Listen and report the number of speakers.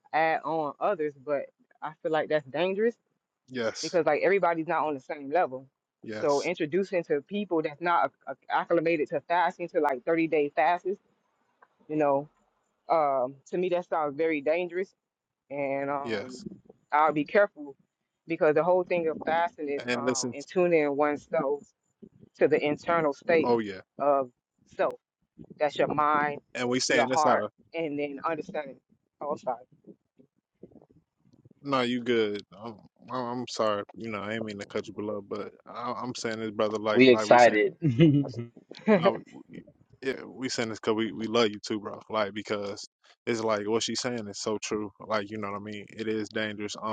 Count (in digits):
3